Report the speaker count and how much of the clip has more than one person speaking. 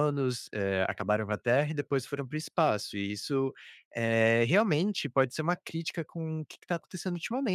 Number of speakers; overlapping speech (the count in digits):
1, no overlap